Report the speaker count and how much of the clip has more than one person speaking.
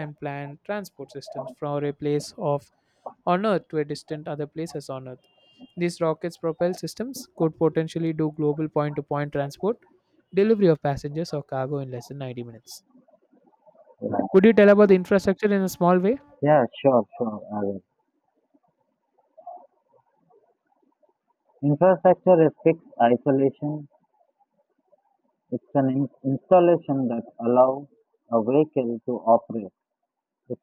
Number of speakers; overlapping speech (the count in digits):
2, no overlap